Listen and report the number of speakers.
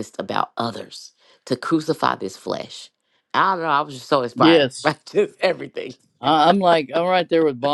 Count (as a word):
two